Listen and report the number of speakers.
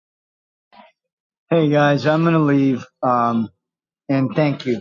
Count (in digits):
1